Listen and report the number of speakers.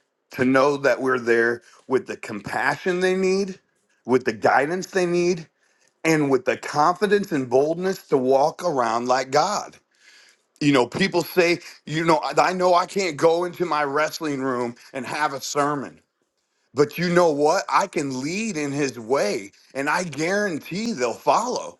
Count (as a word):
one